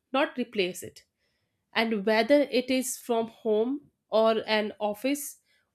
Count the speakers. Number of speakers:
1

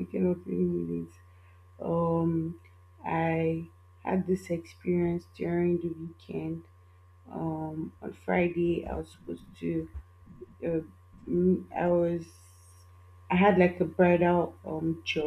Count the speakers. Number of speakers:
1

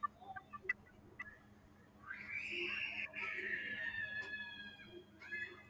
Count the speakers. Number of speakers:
0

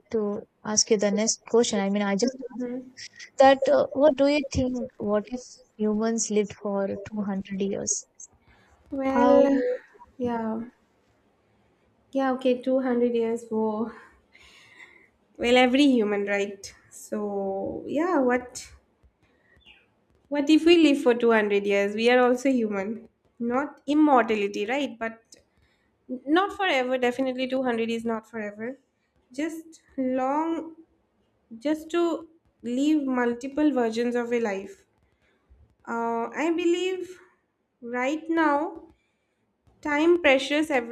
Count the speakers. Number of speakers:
2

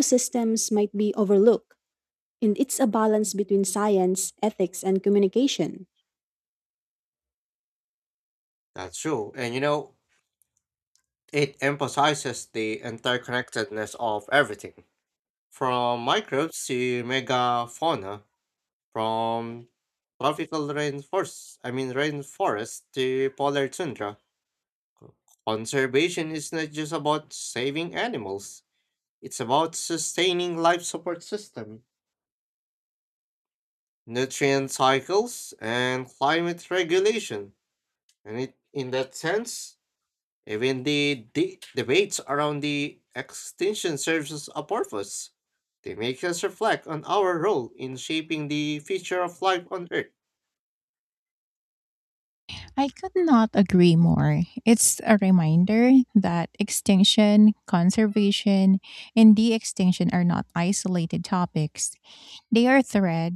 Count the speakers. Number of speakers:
3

